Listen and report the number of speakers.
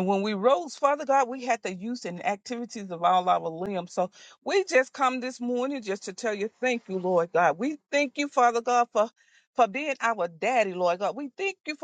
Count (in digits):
1